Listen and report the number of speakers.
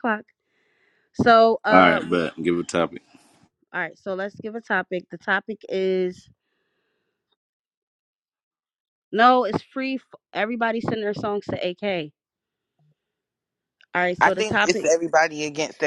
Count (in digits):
3